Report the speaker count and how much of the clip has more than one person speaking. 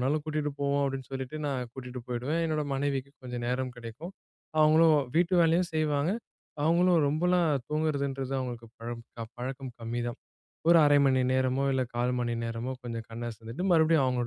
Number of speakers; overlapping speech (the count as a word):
one, no overlap